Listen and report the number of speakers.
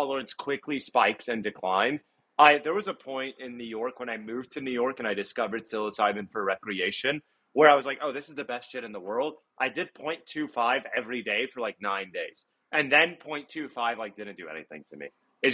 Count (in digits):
1